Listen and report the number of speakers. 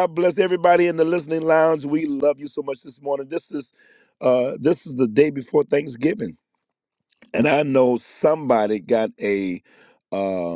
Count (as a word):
one